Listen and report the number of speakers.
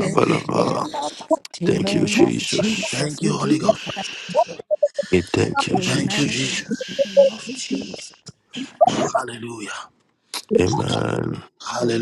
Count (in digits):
3